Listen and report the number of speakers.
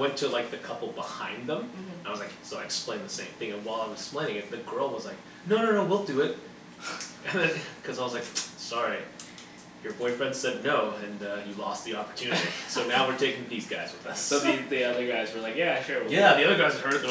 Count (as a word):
two